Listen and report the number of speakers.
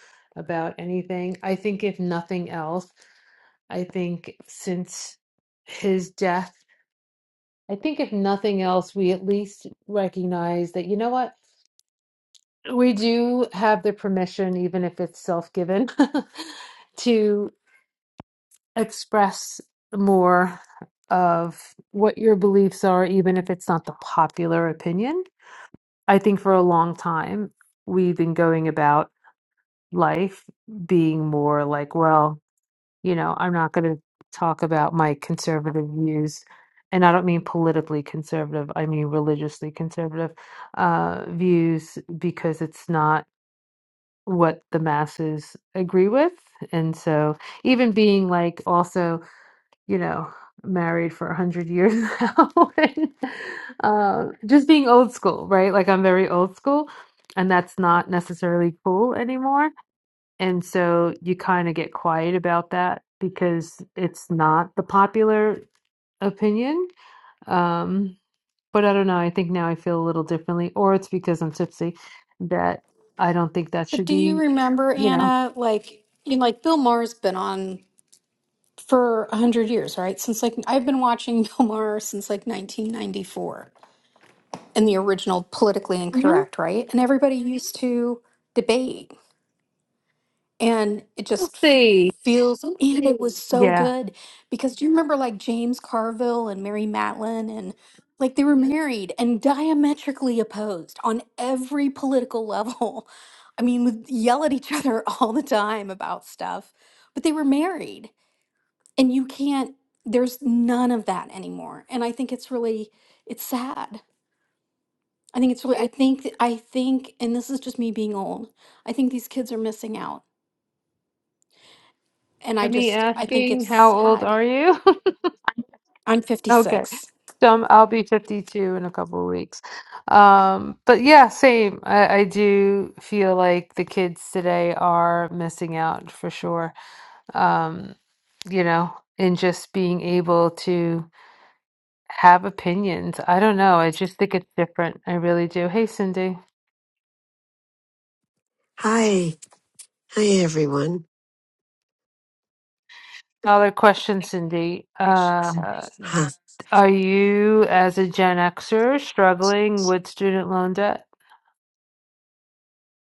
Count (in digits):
3